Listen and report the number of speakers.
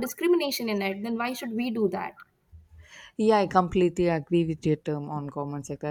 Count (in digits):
2